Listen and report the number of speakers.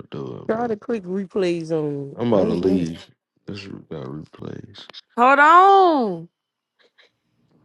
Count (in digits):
3